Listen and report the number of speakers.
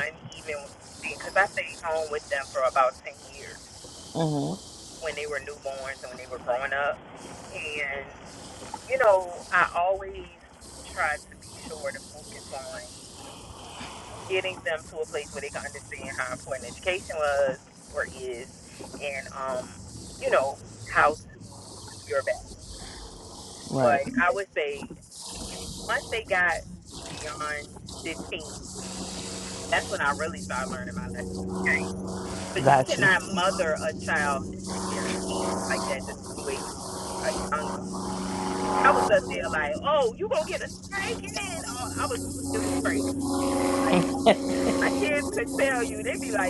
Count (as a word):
two